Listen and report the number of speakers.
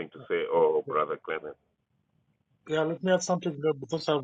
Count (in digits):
2